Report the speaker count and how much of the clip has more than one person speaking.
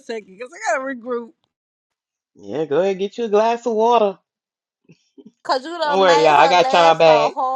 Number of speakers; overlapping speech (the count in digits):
3, about 20%